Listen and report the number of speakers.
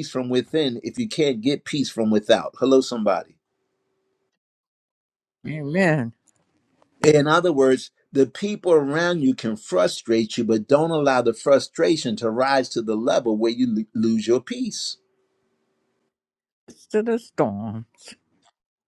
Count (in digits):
2